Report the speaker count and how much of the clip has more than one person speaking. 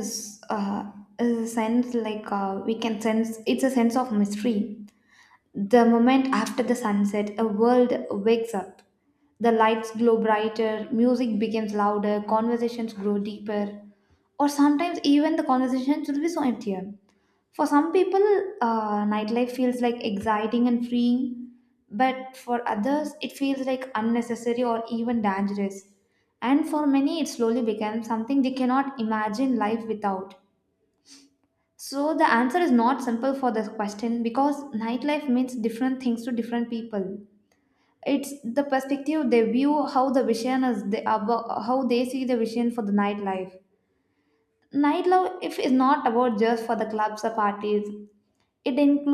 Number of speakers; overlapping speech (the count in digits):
1, no overlap